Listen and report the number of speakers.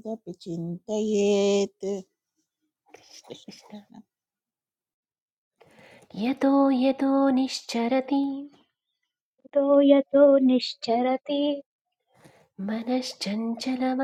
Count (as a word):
three